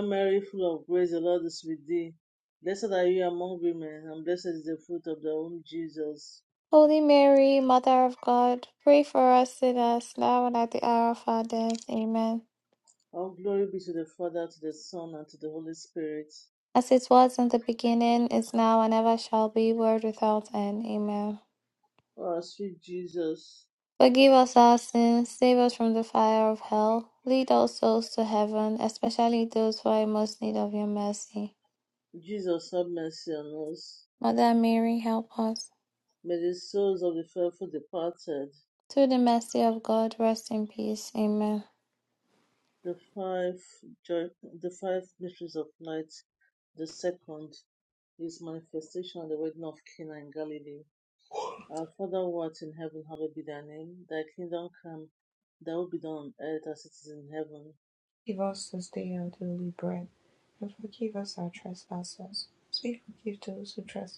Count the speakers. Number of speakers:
3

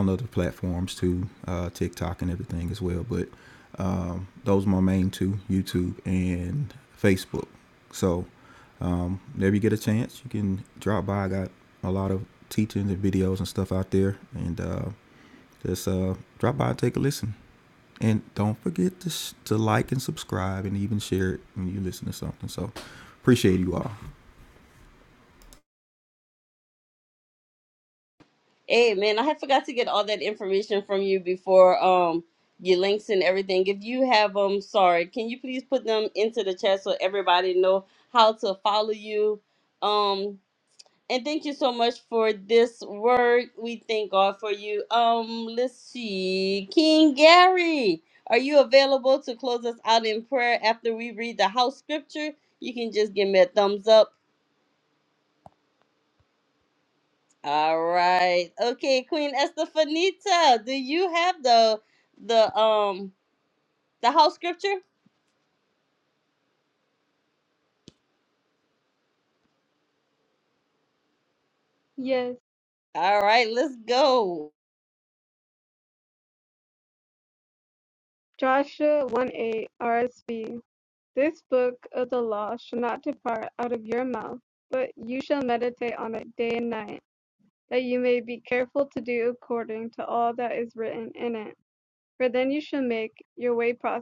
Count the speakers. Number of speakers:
3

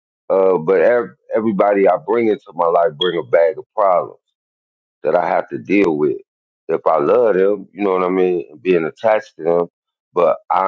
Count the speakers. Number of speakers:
1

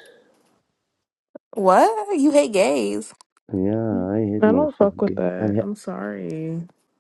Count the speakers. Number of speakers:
3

